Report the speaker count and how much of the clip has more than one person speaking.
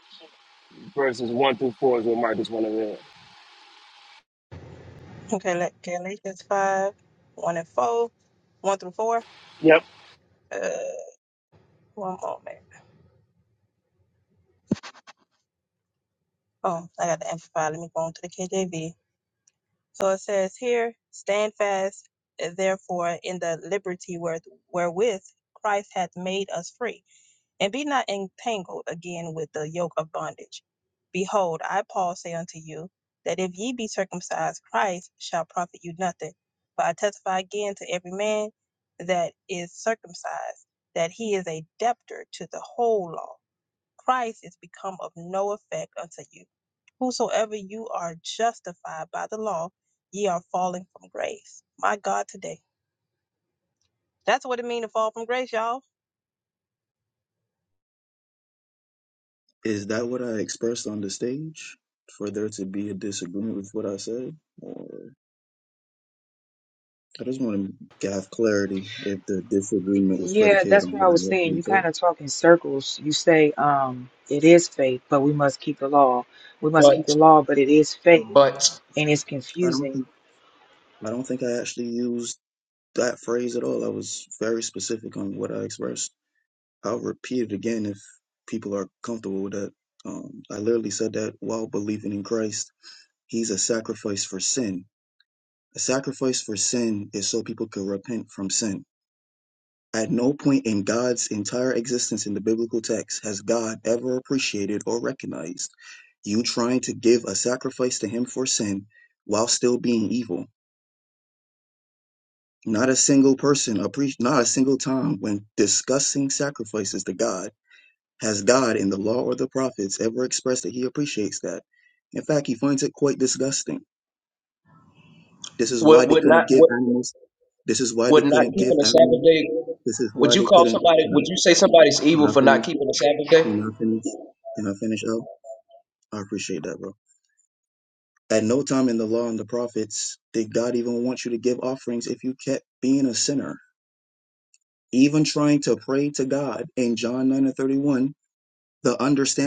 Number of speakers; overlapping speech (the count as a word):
five, about 4%